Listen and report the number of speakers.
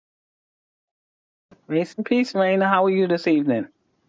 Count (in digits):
1